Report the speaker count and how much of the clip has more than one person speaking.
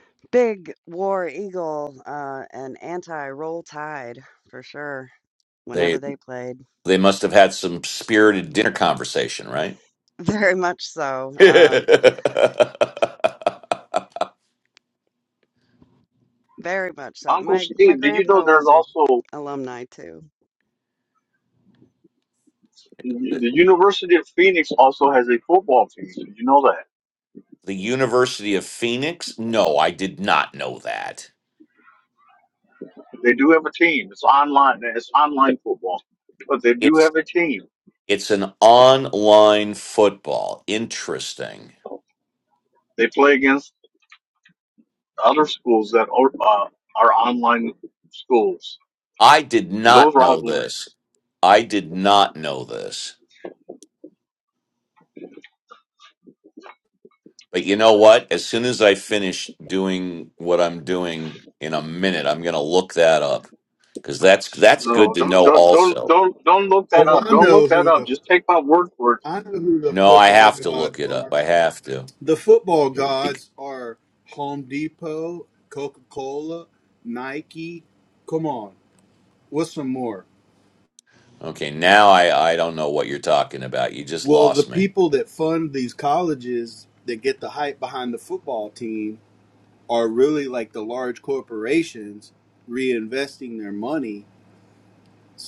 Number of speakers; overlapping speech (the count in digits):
4, about 8%